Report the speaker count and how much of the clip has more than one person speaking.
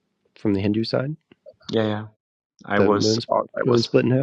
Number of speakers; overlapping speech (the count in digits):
2, about 17%